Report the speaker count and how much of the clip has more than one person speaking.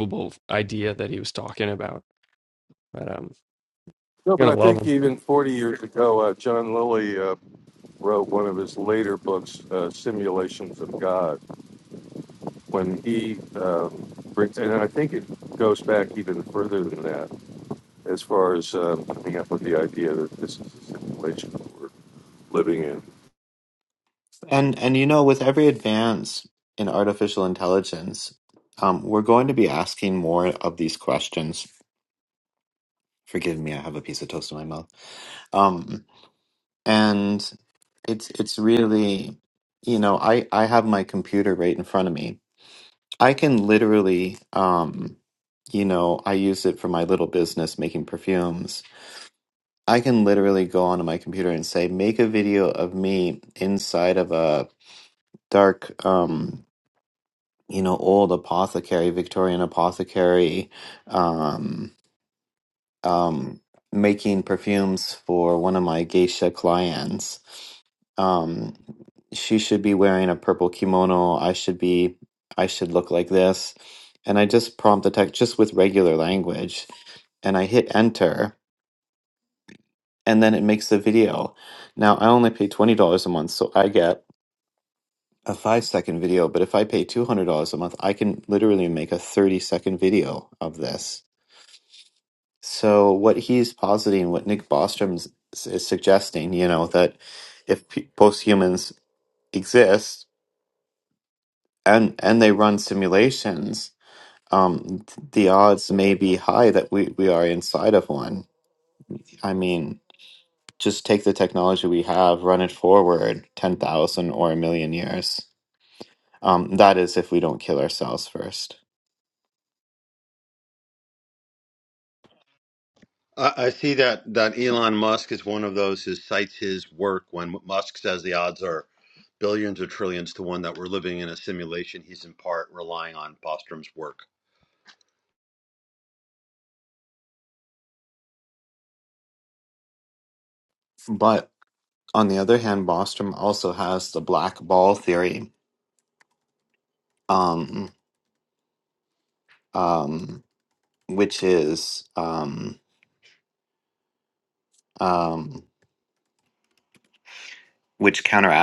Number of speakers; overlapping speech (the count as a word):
four, under 1%